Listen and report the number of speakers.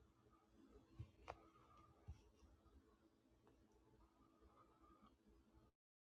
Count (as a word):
zero